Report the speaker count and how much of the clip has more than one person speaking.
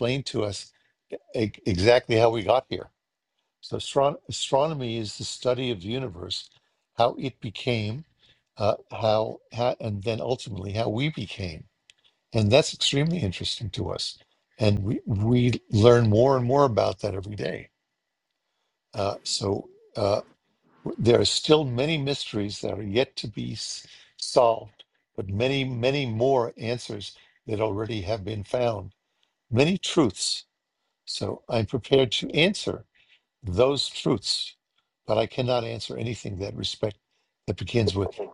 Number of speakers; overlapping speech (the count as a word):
one, no overlap